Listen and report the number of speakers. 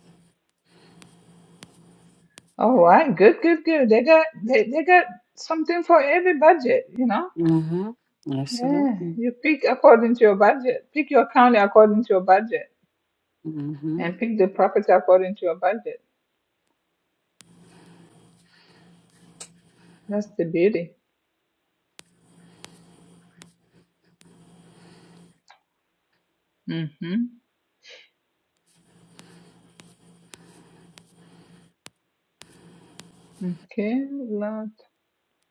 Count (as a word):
two